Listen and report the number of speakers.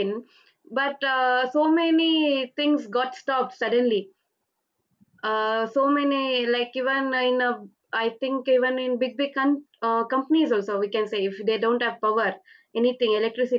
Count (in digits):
1